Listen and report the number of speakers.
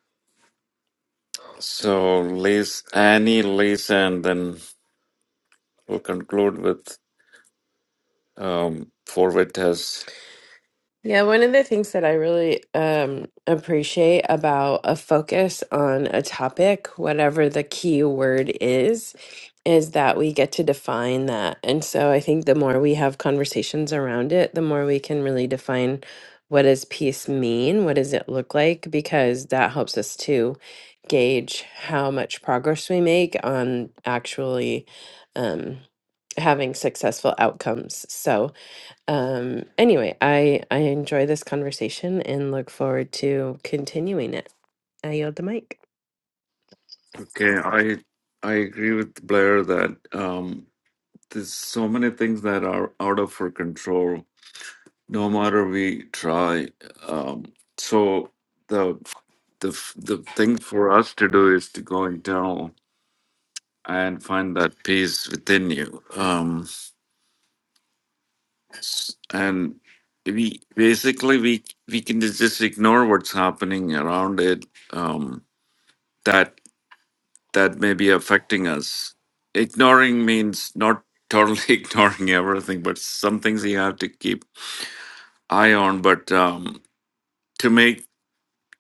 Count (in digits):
2